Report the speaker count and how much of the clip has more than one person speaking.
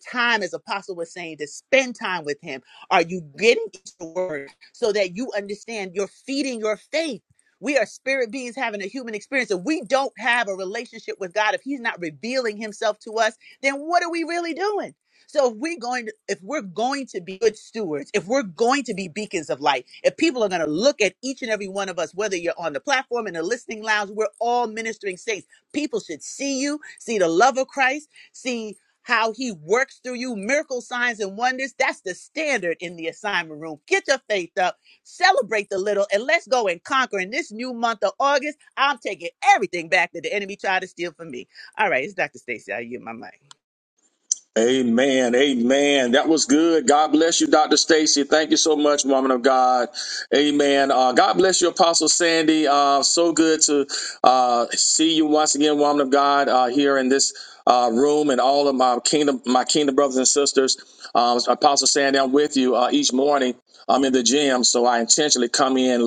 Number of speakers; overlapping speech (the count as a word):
two, no overlap